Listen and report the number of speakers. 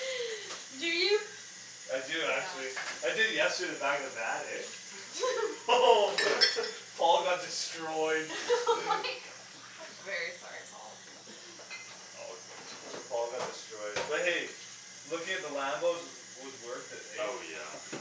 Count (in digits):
4